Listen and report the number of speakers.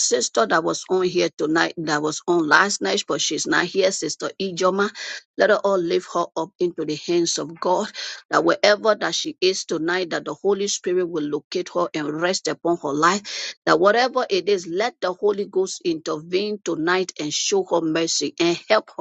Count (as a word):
one